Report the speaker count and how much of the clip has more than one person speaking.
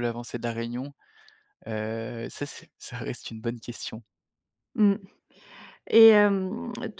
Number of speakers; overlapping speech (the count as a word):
two, no overlap